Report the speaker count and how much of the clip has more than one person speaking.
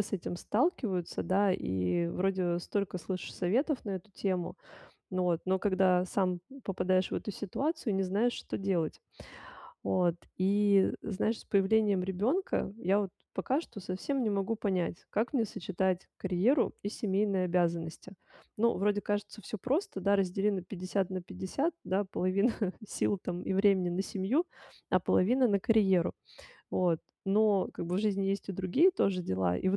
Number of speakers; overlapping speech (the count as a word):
one, no overlap